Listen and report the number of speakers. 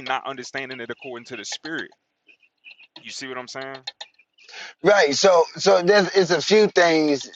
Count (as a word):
two